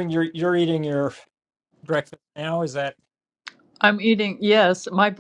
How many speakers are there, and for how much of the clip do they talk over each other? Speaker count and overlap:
2, no overlap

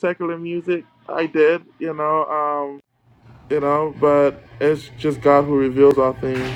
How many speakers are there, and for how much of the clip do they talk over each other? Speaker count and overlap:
1, no overlap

